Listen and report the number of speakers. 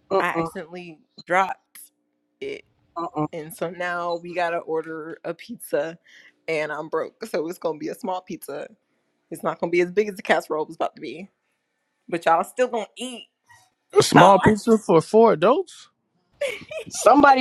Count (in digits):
3